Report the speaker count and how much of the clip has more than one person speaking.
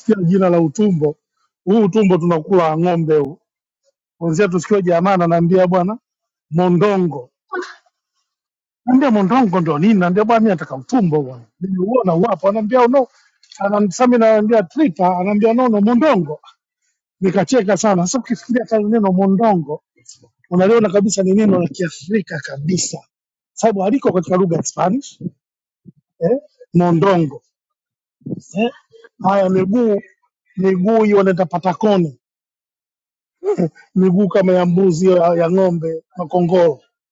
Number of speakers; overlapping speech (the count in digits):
1, no overlap